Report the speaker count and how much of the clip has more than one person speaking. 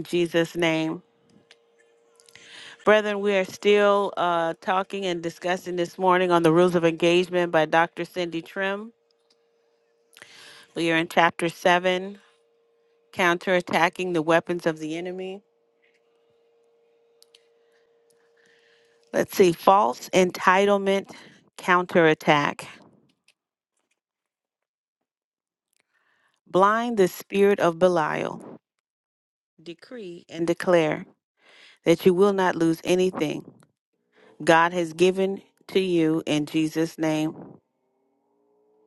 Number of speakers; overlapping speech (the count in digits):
1, no overlap